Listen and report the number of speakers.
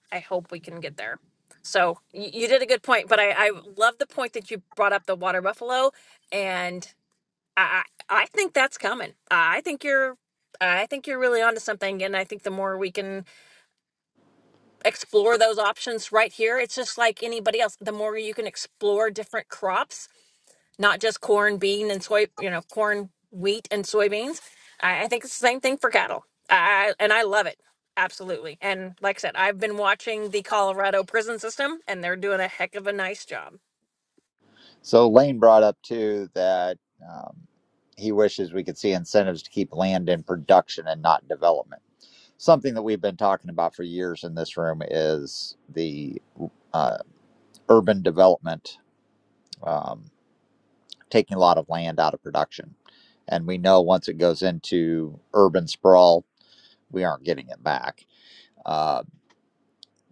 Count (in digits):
2